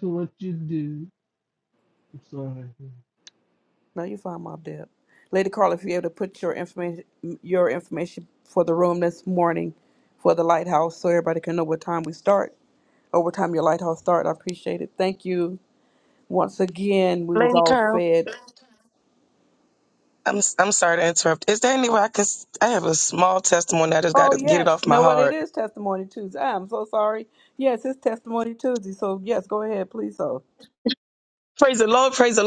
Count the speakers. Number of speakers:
three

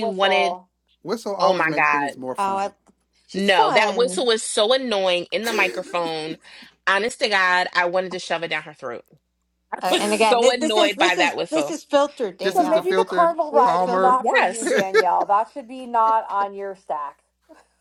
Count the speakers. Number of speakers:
four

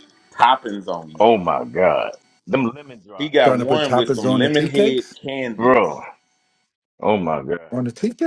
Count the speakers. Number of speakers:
three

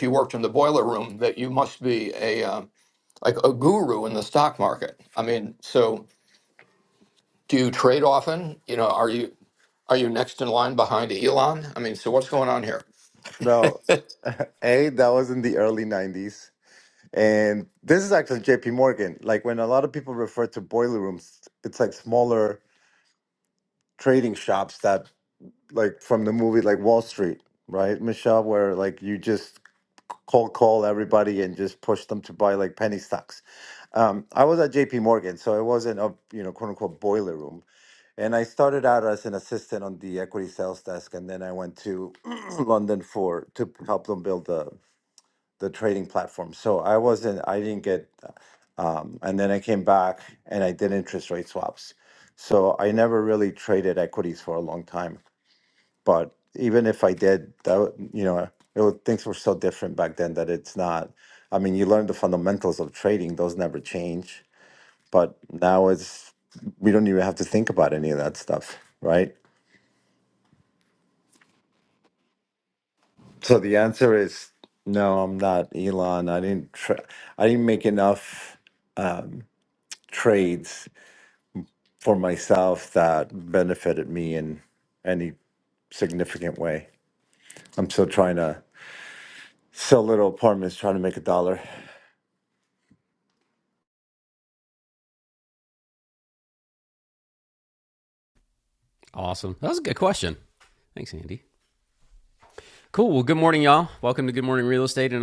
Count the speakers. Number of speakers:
three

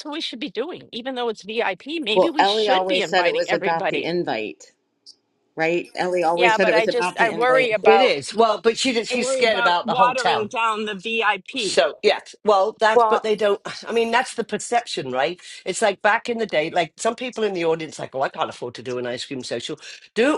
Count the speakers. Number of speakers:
three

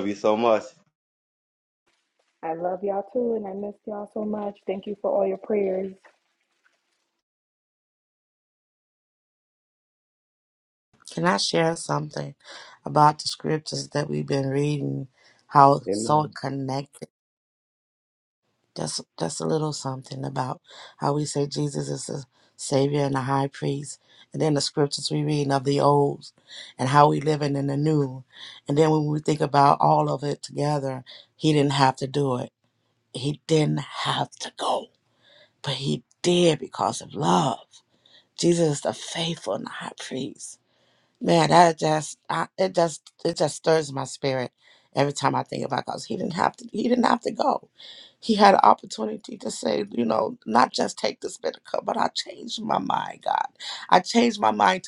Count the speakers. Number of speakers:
three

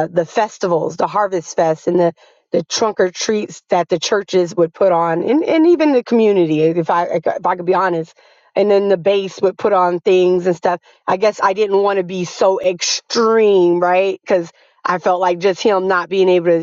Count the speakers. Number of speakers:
one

